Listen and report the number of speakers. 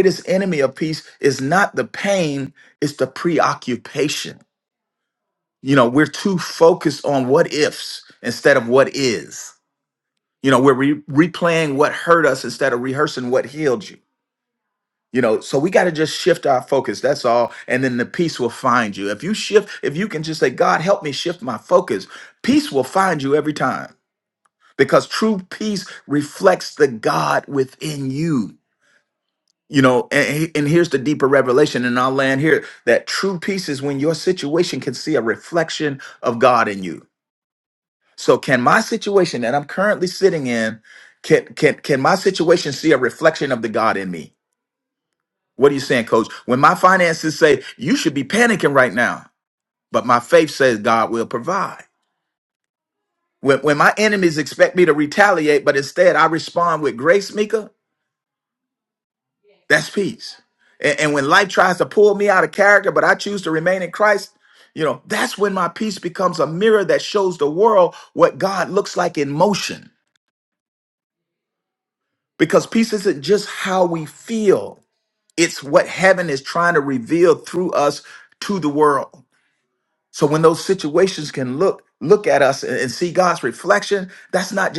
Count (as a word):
one